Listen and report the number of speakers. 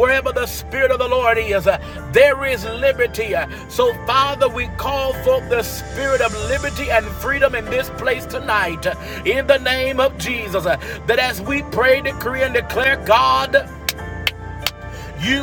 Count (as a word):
one